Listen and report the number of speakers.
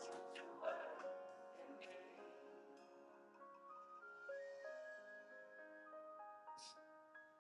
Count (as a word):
zero